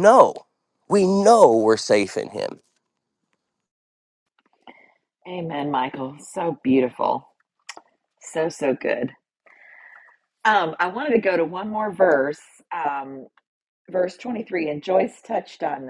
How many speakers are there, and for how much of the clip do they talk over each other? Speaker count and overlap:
two, no overlap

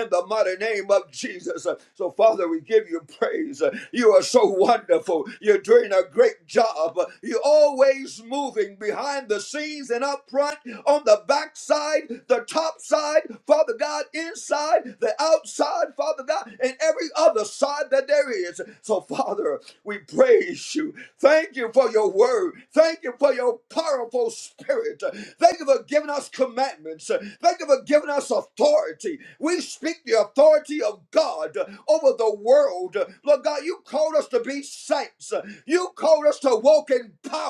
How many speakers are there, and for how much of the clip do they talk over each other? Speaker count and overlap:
one, no overlap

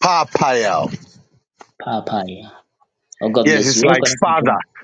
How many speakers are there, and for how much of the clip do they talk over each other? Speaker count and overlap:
two, about 23%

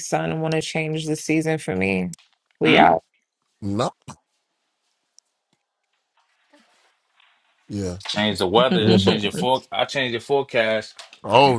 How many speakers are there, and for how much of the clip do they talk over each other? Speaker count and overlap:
three, about 5%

